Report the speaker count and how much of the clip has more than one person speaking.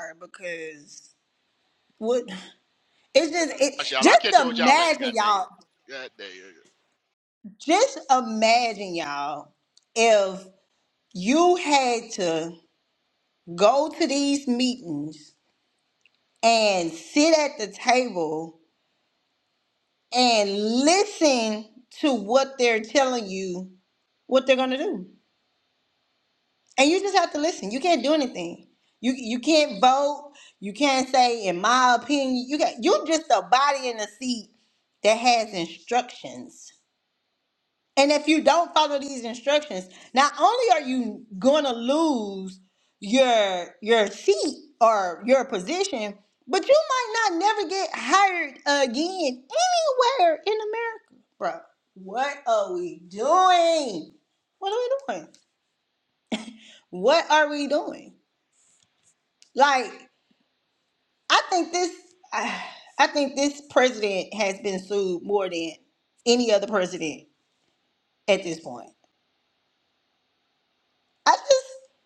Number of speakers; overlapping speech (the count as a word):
two, about 2%